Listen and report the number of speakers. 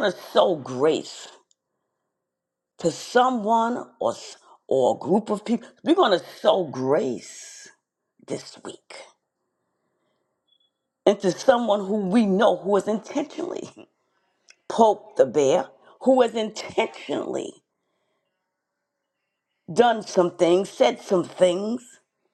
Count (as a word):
one